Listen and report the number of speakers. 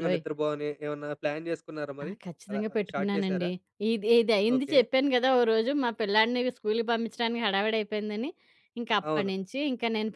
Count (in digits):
2